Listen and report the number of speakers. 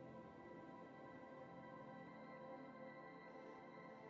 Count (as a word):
zero